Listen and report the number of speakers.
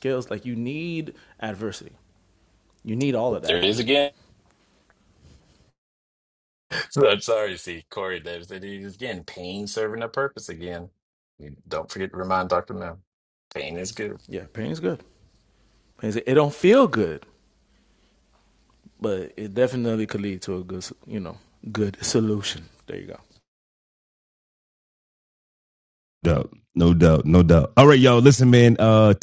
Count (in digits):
3